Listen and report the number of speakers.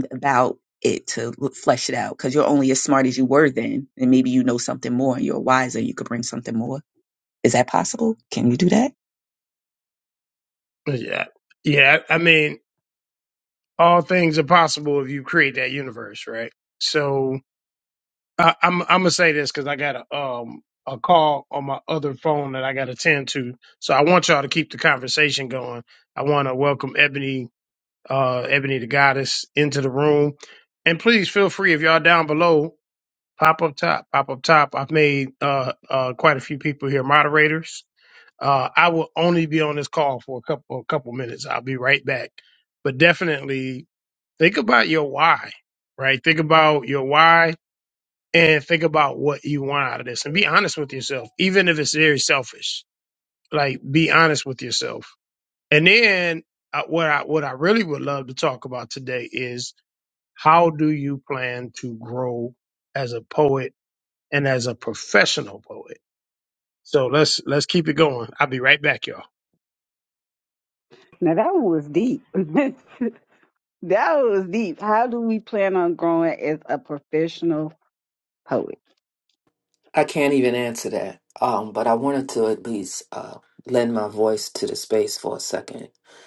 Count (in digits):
4